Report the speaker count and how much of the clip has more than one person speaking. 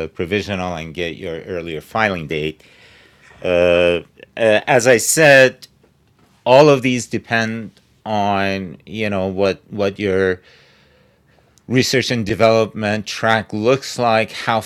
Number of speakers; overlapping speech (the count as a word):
one, no overlap